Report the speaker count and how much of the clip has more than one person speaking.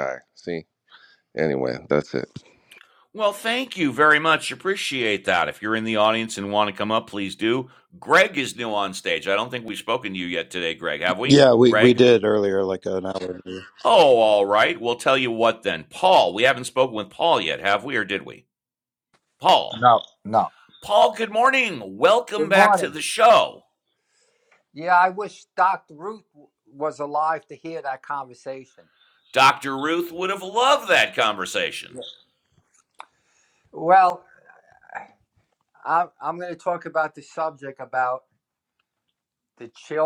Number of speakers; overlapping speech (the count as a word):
four, about 2%